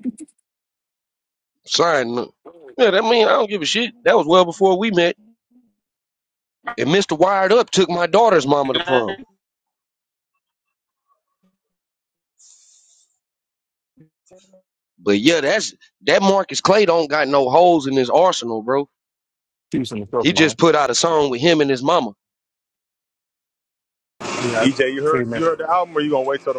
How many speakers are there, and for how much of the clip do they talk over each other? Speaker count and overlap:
3, about 5%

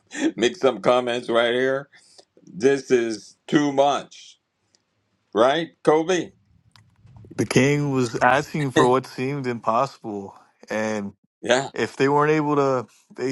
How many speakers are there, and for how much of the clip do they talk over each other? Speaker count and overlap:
2, no overlap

